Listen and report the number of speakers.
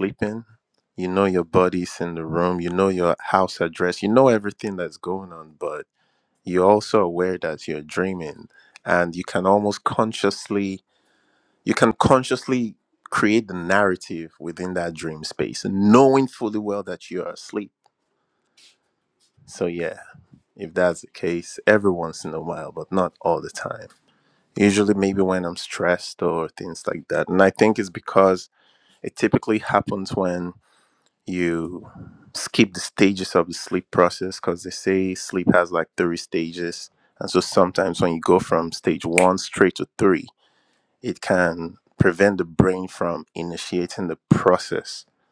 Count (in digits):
1